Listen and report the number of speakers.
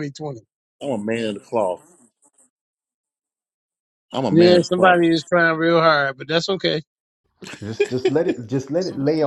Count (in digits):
3